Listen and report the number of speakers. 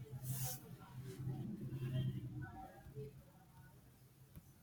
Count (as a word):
zero